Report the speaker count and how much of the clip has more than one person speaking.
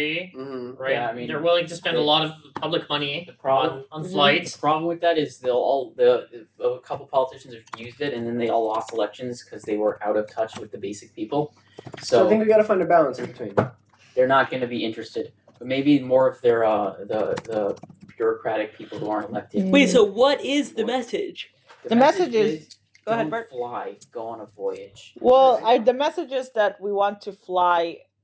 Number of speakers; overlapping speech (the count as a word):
five, about 17%